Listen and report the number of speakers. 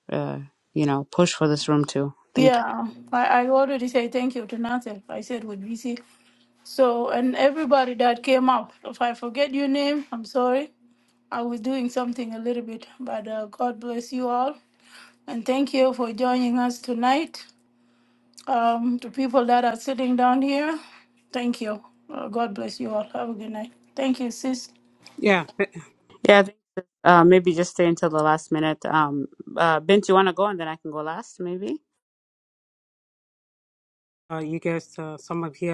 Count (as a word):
three